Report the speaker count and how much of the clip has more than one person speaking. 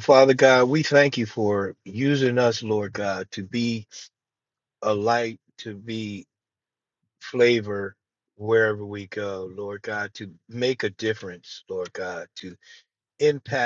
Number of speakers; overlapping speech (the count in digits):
1, no overlap